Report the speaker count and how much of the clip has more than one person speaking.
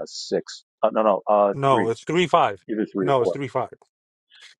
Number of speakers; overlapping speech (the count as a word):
two, about 15%